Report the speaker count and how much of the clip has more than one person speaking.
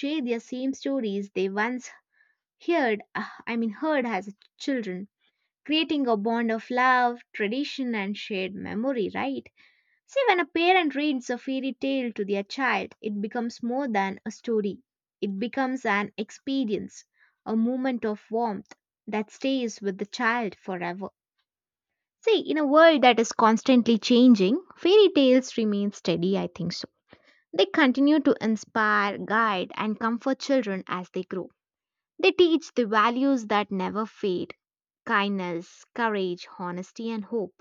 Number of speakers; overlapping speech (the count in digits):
1, no overlap